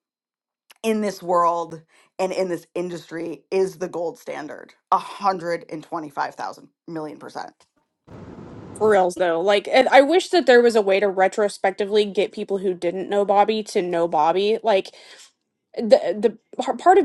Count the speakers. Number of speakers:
2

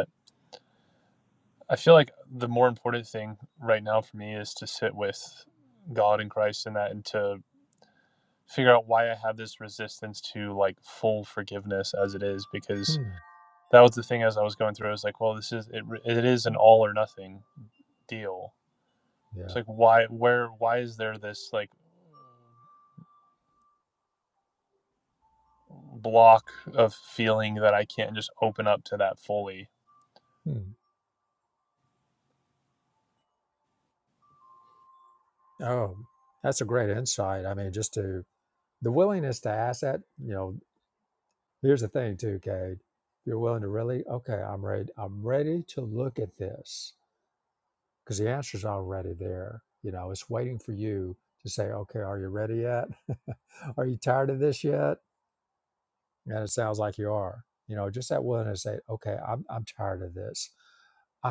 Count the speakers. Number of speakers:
2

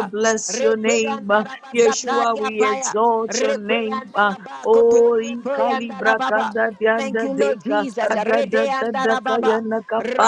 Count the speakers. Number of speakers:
2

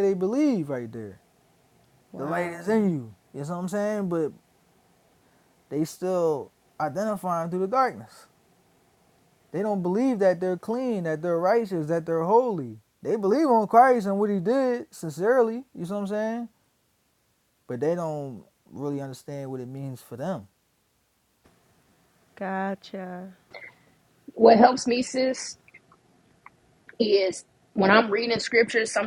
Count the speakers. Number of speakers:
3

